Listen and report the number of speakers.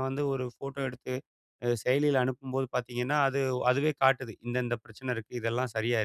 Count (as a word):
one